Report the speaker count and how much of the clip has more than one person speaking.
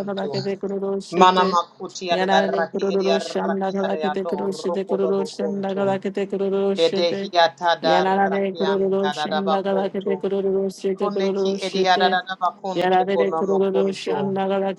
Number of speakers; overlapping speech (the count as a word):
two, about 62%